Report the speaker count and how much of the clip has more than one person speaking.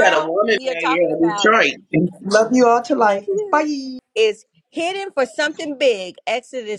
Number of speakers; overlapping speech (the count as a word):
three, about 32%